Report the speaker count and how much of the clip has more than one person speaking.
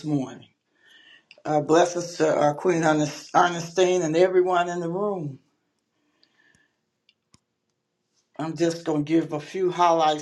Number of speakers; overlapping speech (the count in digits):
1, no overlap